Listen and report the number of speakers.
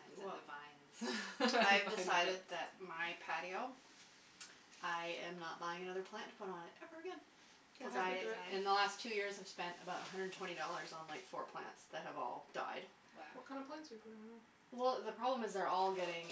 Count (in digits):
3